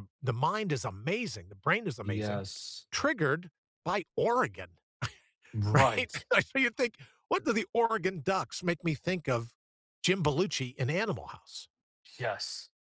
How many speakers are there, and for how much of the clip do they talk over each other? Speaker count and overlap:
two, about 3%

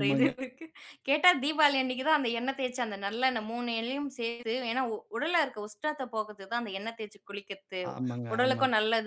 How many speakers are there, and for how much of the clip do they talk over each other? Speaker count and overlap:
two, about 8%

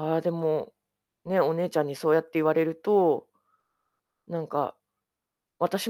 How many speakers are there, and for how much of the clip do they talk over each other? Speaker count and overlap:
one, no overlap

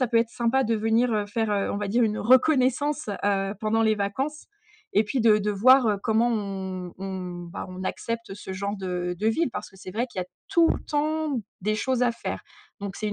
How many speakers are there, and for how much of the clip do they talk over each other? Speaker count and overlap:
one, no overlap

